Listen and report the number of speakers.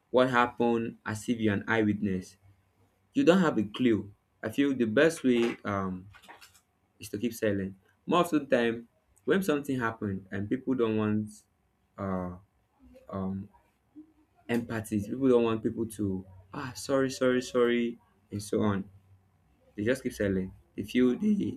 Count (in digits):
1